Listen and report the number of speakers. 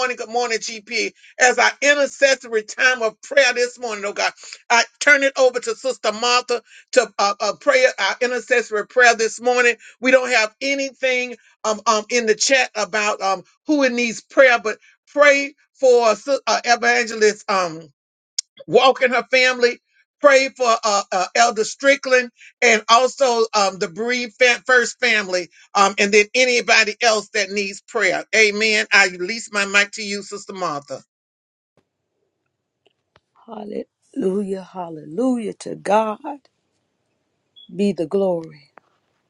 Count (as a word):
two